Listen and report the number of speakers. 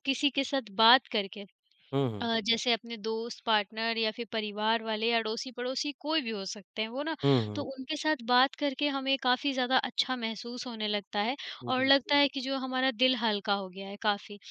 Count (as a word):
two